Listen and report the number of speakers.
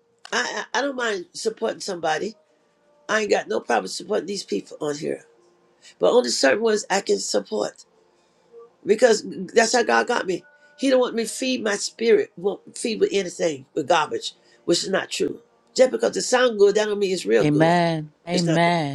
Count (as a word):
two